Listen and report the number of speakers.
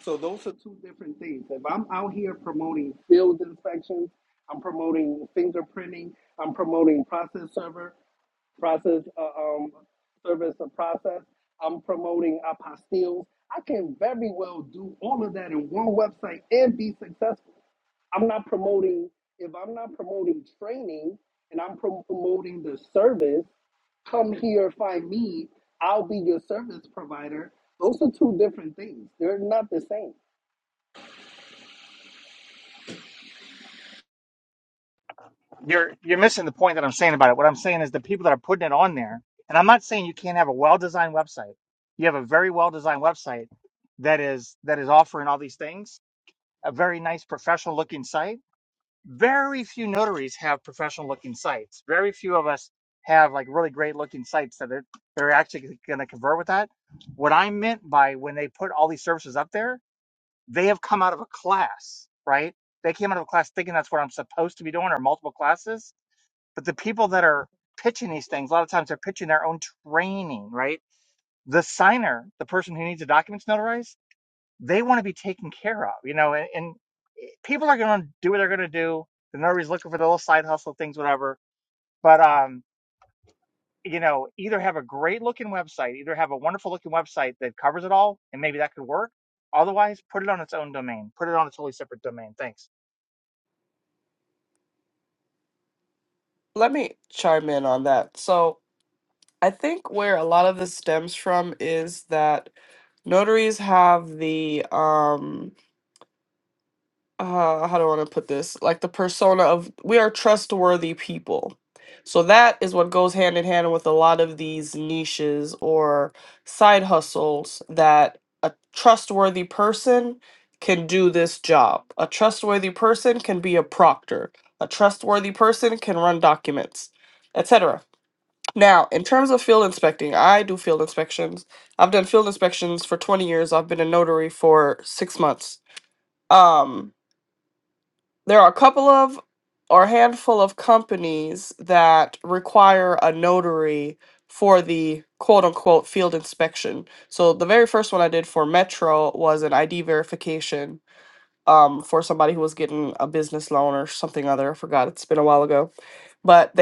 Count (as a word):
three